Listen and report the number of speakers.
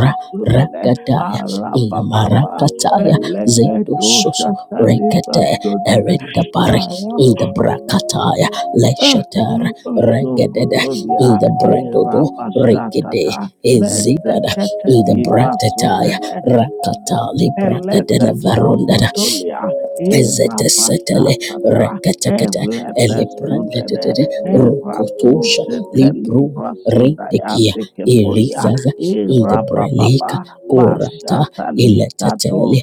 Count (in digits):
2